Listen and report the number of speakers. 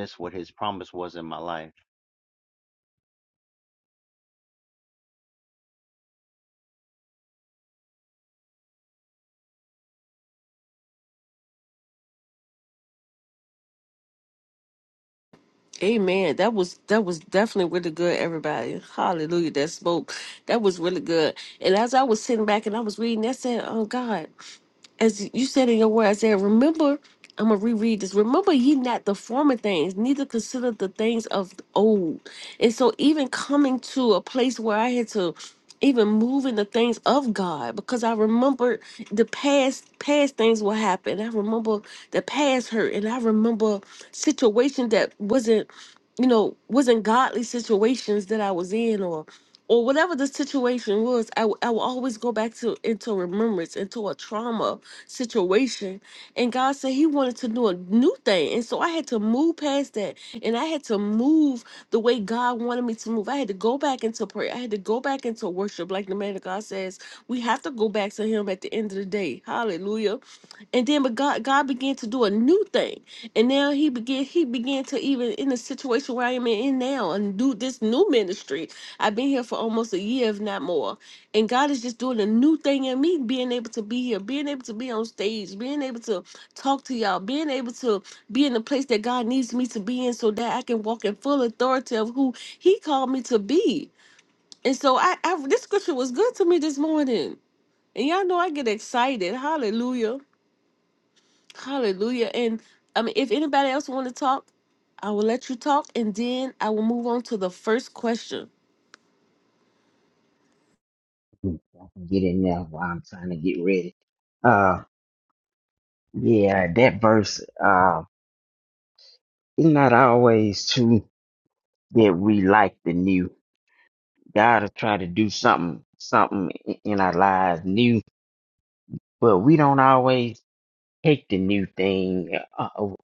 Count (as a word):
three